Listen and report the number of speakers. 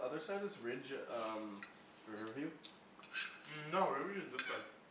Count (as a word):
two